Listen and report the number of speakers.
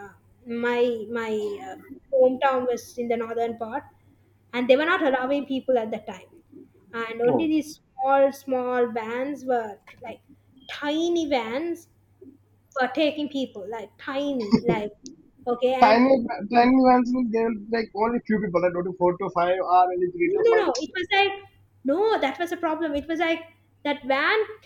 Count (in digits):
2